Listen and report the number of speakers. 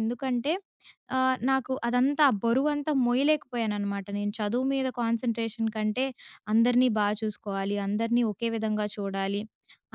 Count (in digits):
1